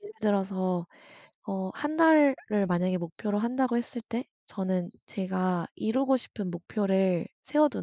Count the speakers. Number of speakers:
one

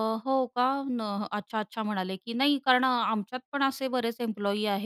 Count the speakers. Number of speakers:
one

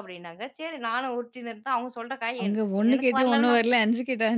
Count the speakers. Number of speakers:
two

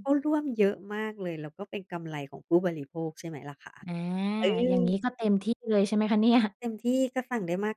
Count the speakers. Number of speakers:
two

